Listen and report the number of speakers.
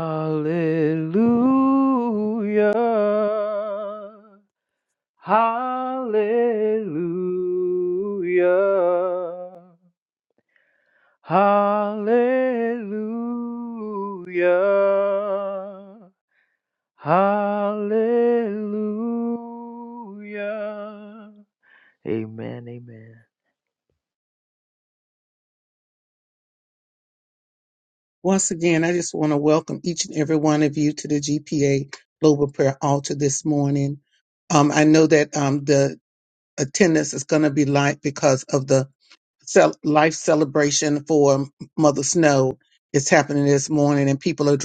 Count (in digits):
2